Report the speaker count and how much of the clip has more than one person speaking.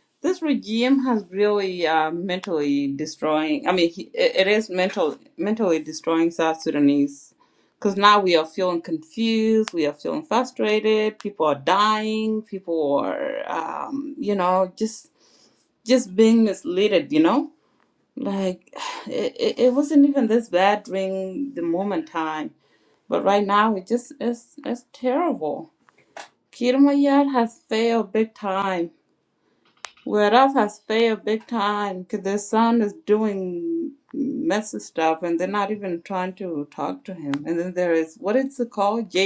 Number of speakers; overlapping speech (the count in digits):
1, no overlap